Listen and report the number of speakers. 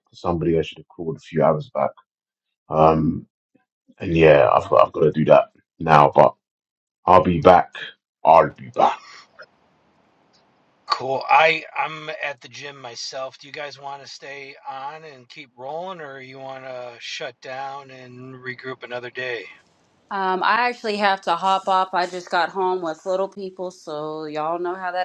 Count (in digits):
3